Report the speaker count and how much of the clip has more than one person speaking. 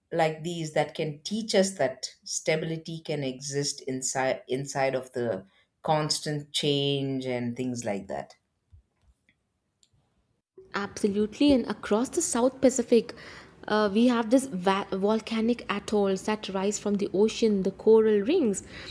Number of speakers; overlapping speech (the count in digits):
2, no overlap